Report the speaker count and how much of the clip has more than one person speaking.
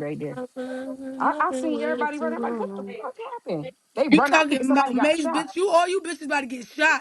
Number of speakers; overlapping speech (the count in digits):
3, about 45%